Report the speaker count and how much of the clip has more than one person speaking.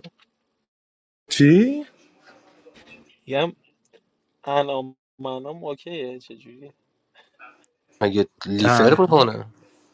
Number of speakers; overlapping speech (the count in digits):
3, about 6%